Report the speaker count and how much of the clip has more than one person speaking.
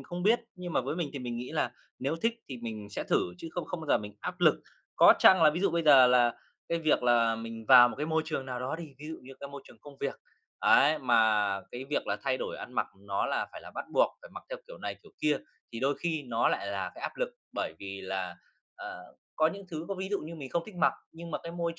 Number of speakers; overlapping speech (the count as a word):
one, no overlap